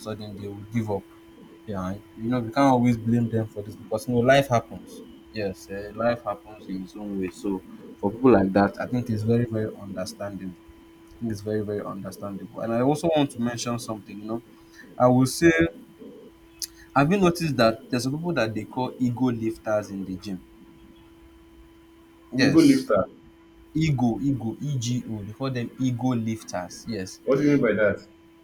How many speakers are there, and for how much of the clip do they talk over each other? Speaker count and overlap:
two, about 1%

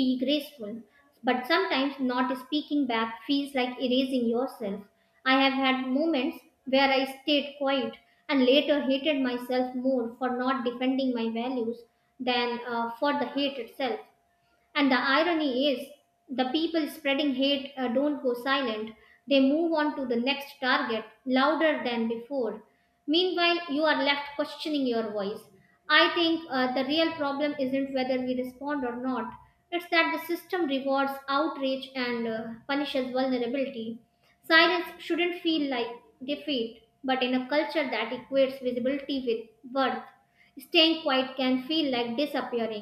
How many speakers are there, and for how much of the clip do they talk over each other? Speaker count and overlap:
one, no overlap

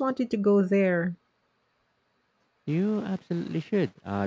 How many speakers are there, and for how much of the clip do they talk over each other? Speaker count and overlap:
two, no overlap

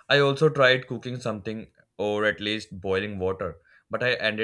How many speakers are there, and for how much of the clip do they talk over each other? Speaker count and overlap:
one, no overlap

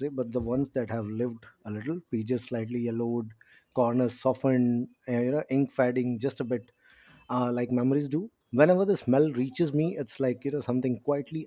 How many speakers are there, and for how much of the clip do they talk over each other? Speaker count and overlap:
one, no overlap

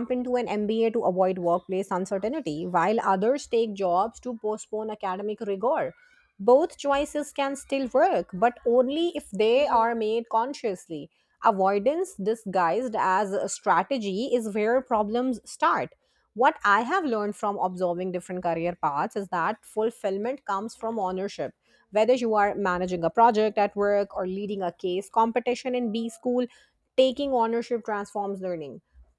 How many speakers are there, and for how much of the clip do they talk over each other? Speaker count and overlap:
one, no overlap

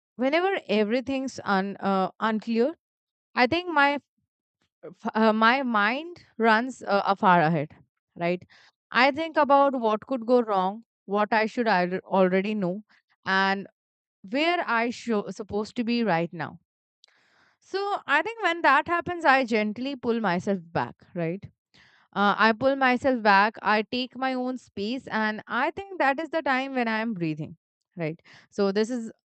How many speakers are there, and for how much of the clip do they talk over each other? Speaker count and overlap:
one, no overlap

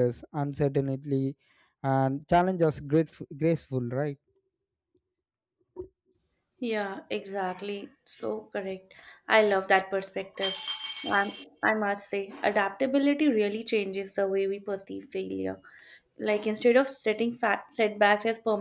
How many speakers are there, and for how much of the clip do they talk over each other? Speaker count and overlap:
two, no overlap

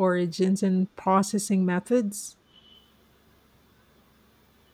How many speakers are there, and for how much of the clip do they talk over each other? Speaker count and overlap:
one, no overlap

